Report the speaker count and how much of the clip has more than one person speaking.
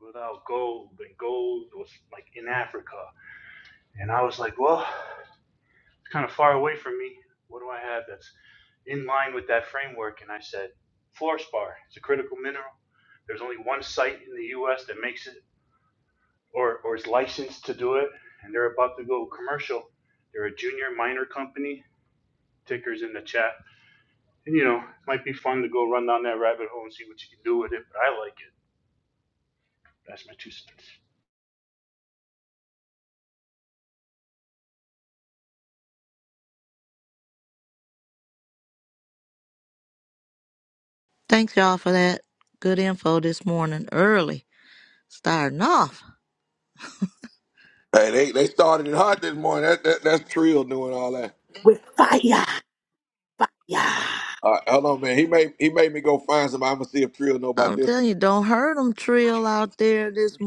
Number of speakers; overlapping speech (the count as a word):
four, about 1%